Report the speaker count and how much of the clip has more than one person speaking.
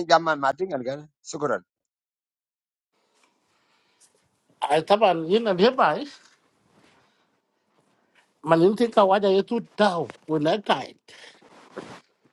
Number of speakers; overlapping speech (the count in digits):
2, no overlap